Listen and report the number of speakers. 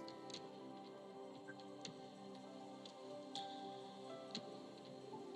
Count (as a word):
zero